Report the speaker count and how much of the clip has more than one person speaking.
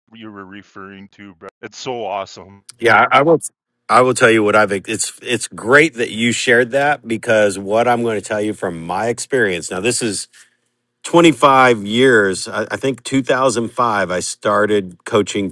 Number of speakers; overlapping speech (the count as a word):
two, no overlap